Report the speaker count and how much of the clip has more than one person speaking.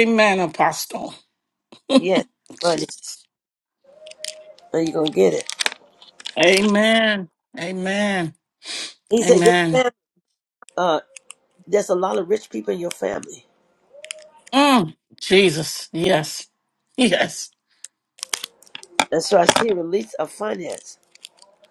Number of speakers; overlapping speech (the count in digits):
2, about 4%